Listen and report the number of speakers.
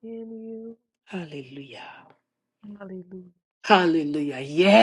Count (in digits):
2